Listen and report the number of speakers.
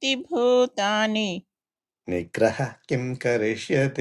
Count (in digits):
2